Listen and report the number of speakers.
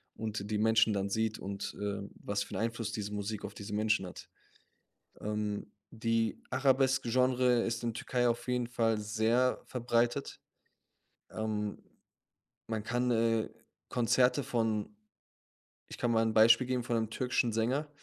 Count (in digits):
1